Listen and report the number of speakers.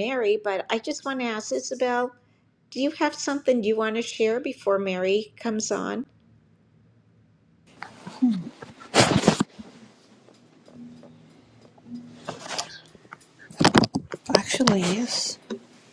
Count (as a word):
two